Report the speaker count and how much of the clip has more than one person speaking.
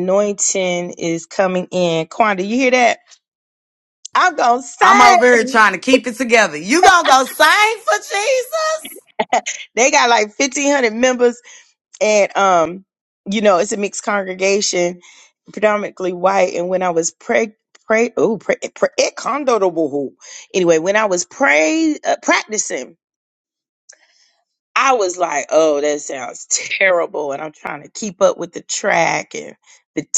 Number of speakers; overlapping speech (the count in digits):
2, about 1%